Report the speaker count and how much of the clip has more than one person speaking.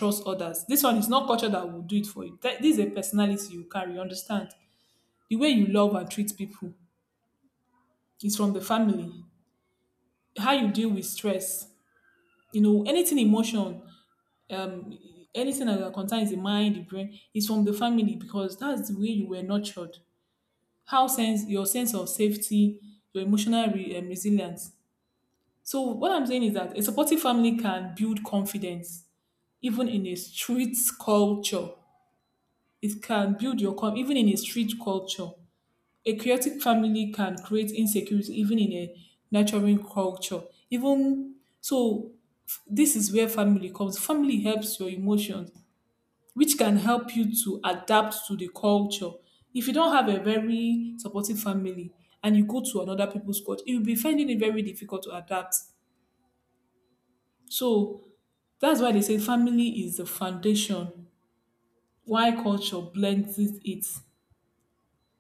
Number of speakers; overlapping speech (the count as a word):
one, no overlap